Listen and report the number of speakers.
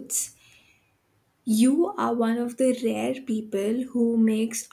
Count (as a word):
one